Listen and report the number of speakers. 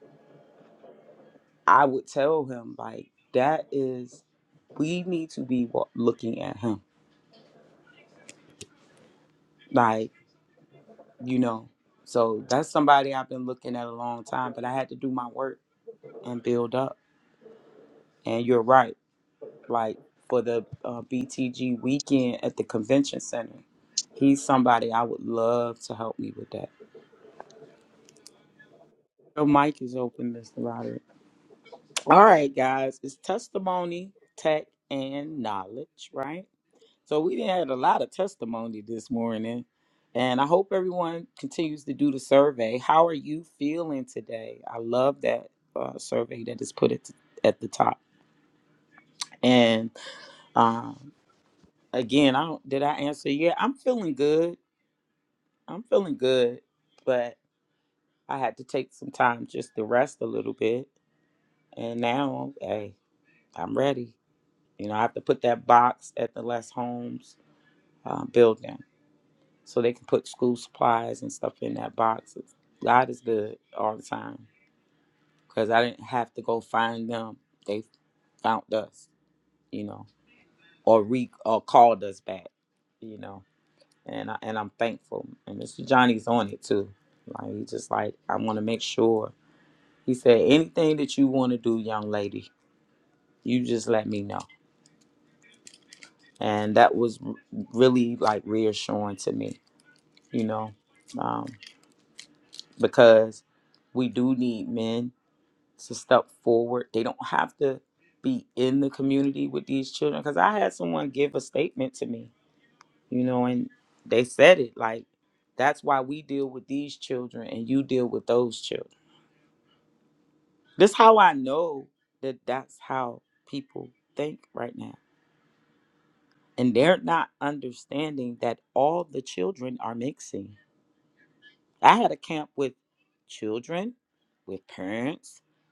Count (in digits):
1